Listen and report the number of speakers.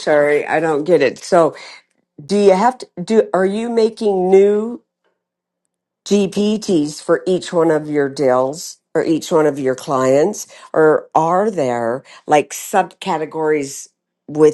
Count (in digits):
1